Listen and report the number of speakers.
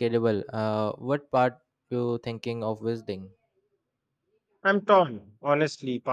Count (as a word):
two